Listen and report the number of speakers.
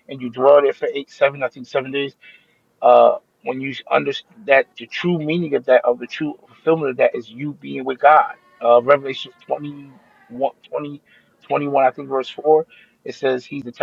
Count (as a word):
one